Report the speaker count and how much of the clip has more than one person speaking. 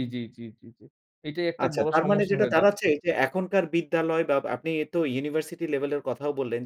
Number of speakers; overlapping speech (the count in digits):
2, about 17%